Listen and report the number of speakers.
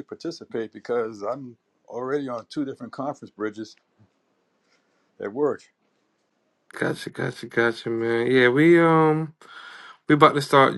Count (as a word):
two